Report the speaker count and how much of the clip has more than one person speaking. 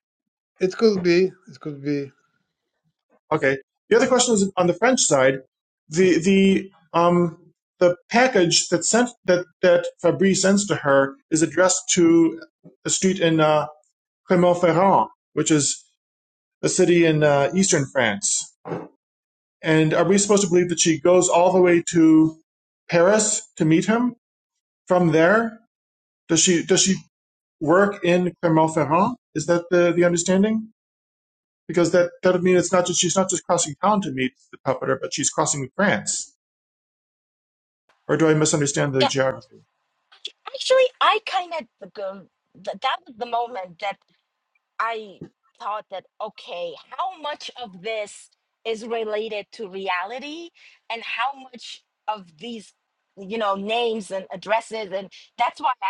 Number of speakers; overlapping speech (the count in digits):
3, under 1%